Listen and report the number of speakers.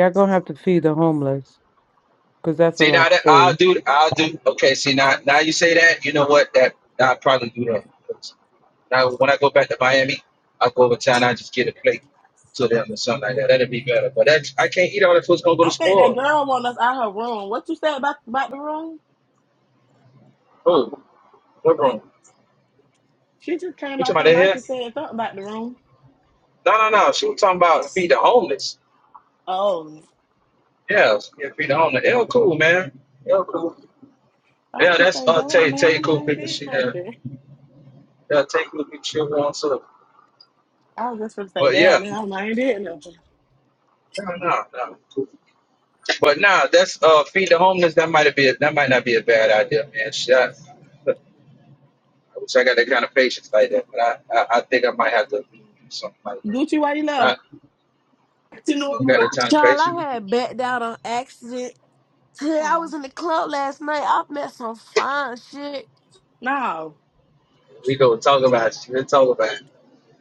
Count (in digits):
4